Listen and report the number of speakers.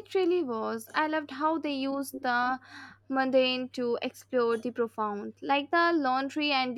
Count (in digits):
1